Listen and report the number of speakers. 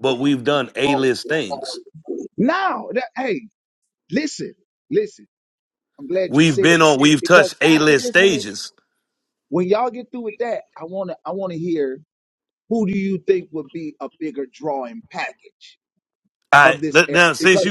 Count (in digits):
2